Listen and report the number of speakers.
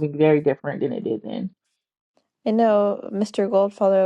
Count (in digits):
2